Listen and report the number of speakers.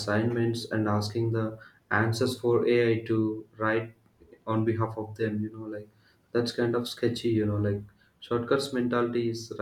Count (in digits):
1